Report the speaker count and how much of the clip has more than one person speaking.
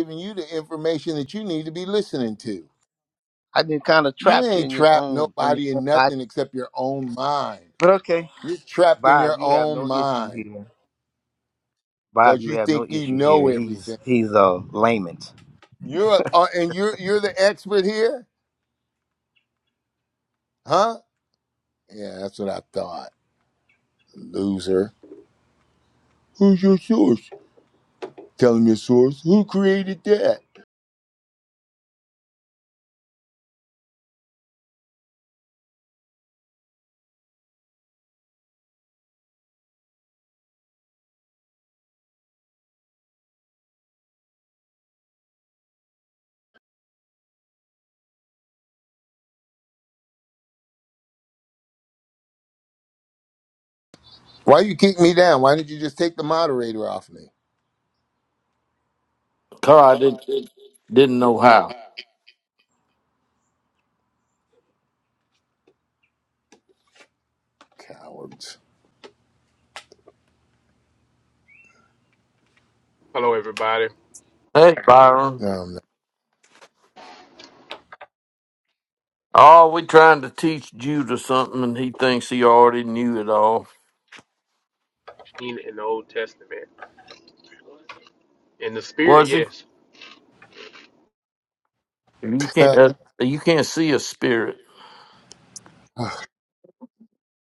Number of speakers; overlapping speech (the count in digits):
4, about 6%